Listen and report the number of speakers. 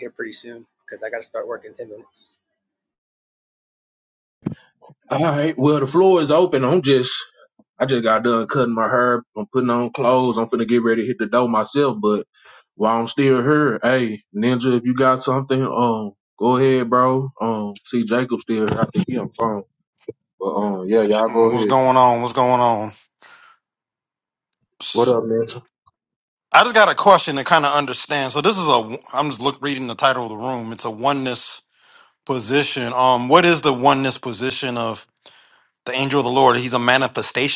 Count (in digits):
3